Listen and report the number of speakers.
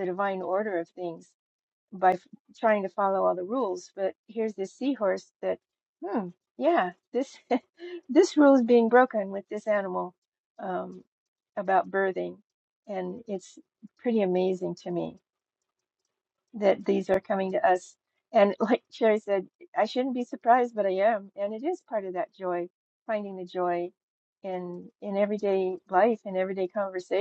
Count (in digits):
1